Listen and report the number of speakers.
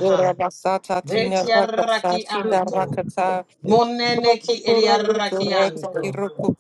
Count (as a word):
two